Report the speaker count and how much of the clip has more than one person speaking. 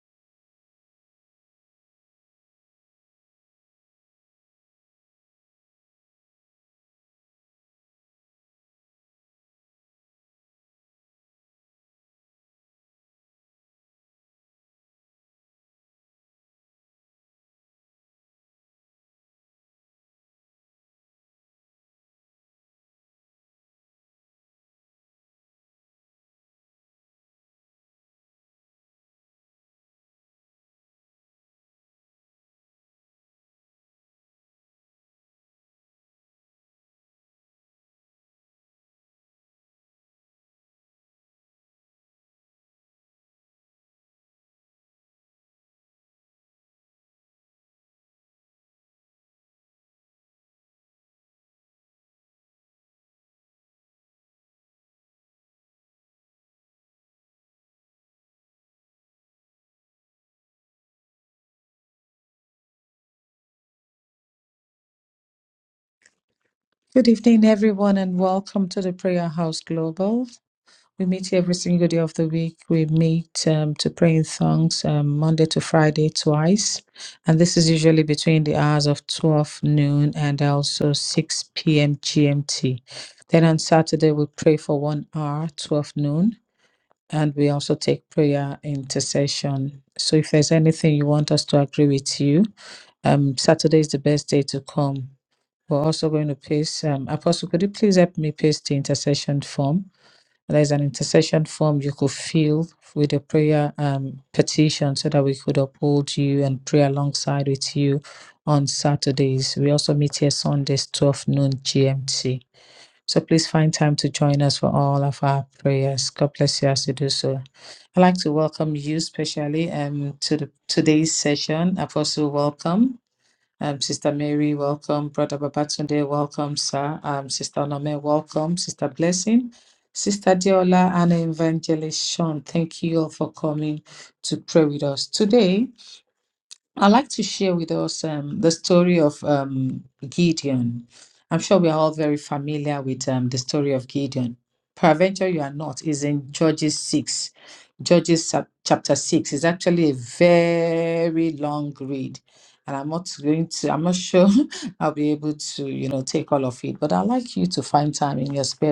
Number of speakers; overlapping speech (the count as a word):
one, no overlap